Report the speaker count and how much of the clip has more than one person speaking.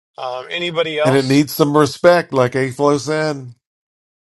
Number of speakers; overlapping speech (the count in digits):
2, about 9%